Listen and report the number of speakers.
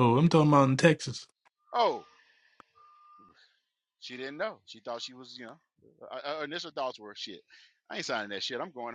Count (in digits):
2